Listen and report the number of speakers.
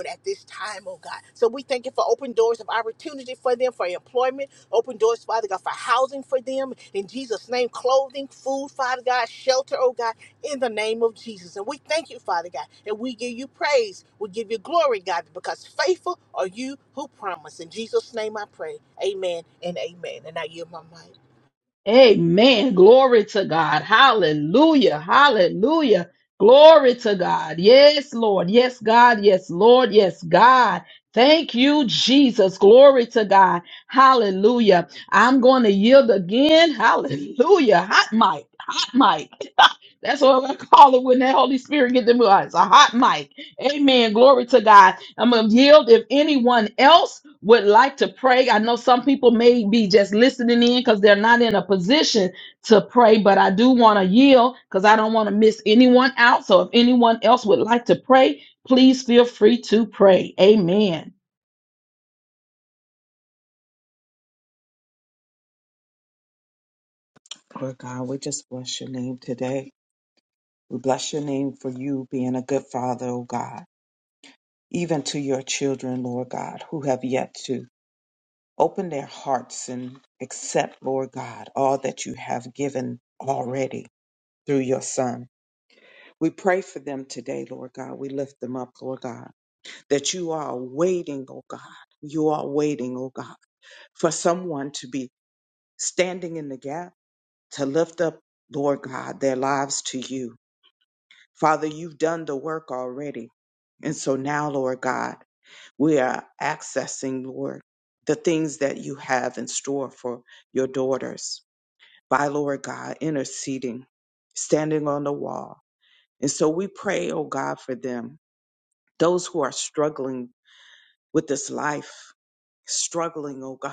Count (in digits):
3